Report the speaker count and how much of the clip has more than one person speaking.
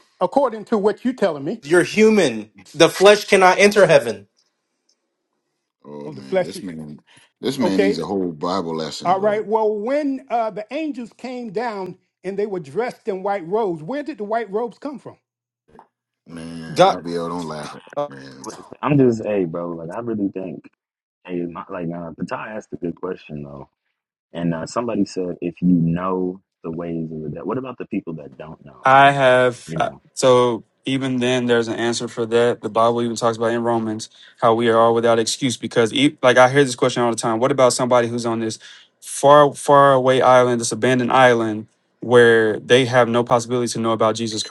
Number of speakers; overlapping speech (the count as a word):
five, about 3%